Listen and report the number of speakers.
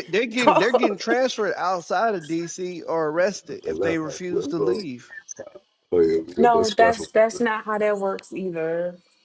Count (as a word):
three